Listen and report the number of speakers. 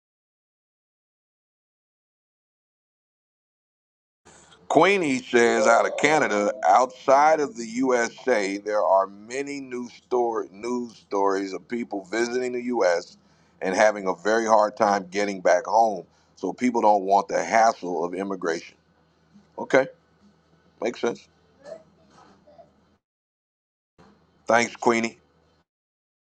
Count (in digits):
1